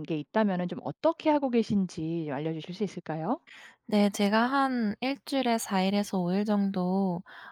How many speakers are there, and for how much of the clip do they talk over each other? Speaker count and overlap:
two, no overlap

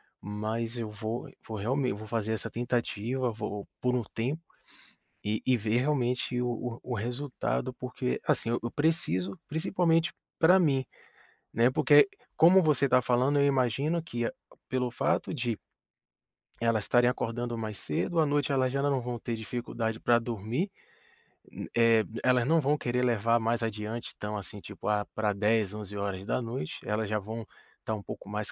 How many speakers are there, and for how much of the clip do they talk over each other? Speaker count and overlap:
one, no overlap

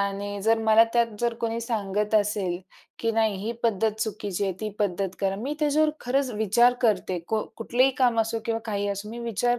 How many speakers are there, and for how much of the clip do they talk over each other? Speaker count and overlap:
one, no overlap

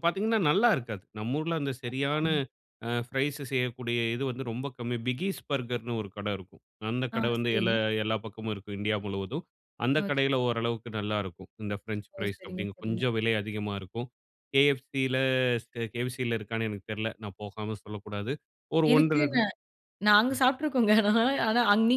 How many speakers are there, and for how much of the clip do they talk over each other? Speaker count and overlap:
two, about 10%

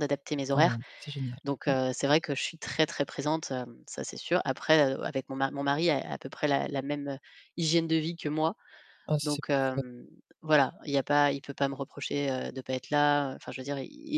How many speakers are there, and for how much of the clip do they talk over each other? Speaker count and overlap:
two, about 8%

